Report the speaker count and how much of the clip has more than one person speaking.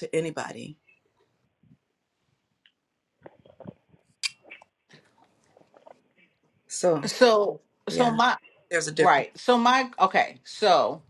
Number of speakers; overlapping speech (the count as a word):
two, about 5%